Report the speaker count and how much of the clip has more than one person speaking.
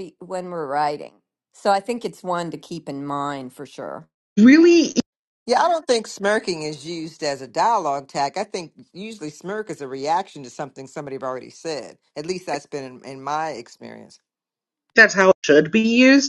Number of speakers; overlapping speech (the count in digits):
3, no overlap